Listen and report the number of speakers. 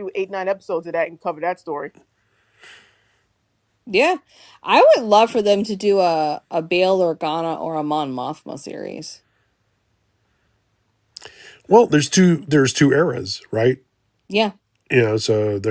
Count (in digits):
3